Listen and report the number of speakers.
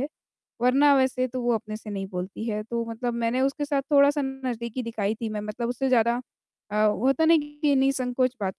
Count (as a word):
one